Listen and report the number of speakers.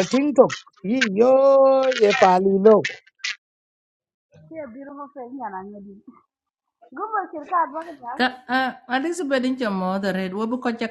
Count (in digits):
3